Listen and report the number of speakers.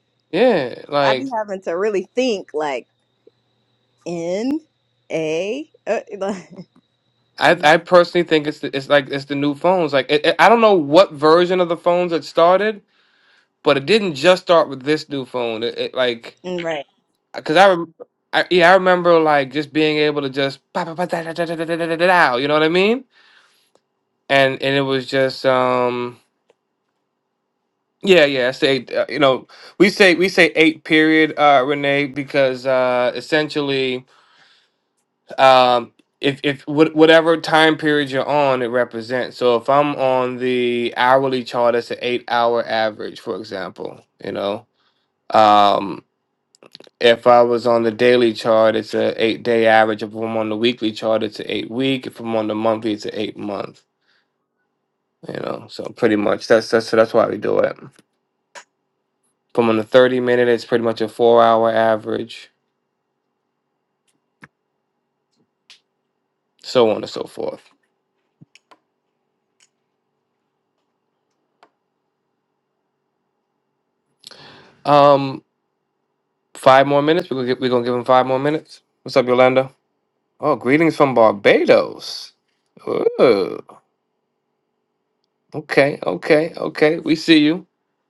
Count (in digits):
2